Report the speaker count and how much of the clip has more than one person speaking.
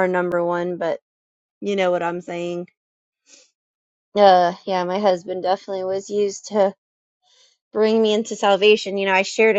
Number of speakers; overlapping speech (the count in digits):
1, no overlap